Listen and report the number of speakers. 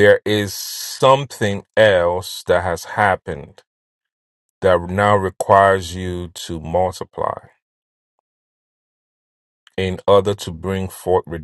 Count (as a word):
one